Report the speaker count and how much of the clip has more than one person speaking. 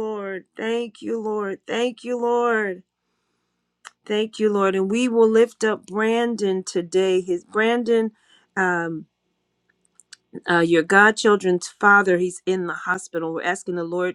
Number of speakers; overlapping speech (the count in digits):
1, no overlap